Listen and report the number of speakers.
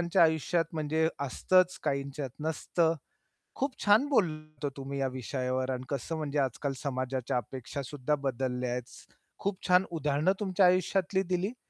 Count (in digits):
1